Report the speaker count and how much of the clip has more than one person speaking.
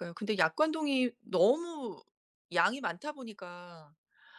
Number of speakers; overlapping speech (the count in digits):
1, no overlap